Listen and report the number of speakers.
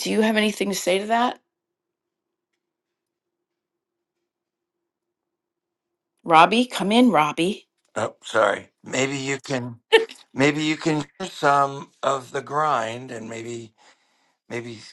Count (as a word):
two